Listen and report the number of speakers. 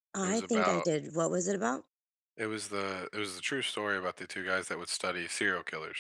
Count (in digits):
2